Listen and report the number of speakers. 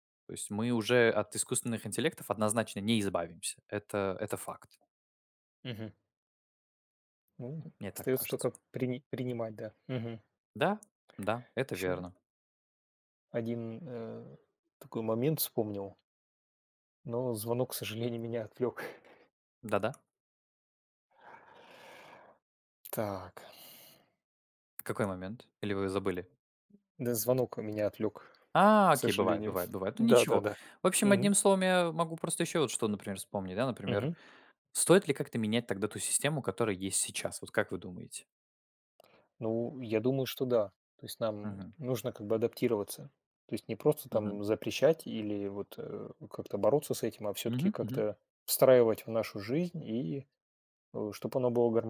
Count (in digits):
2